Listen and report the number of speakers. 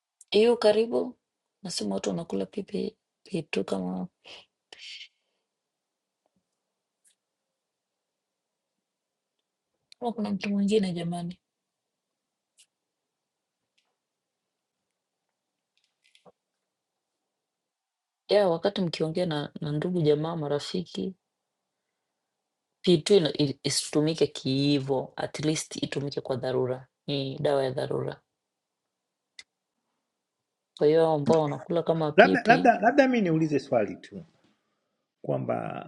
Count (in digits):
2